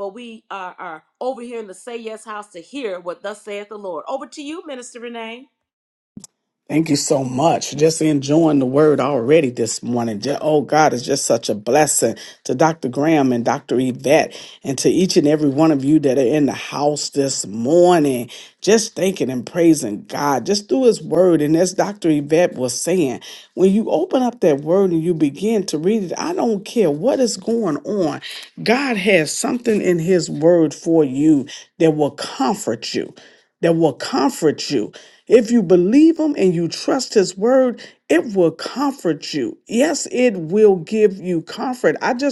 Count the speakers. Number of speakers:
two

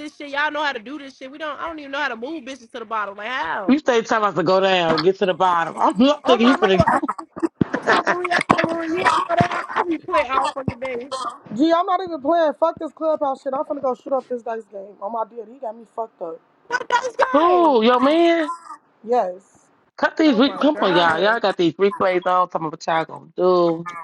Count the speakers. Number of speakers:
three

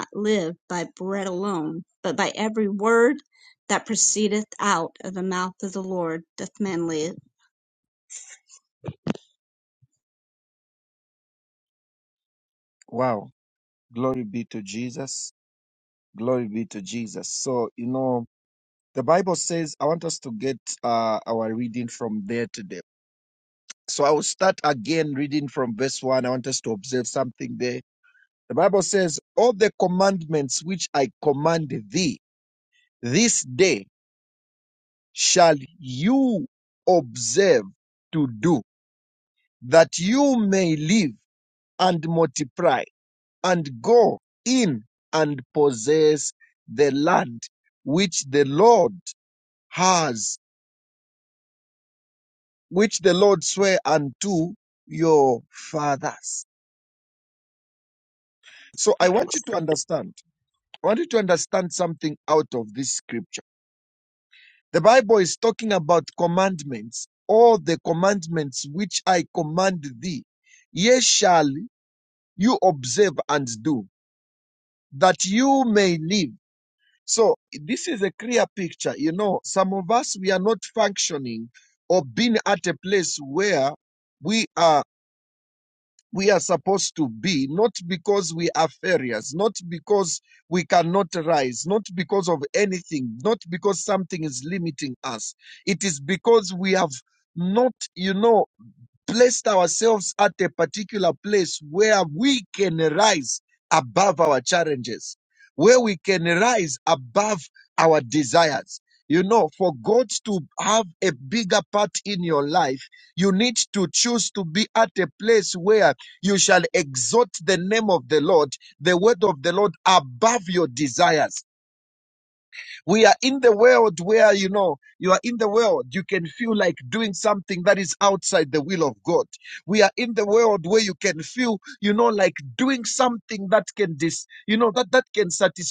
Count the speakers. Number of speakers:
two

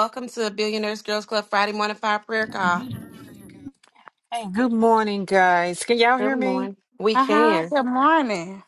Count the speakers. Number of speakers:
three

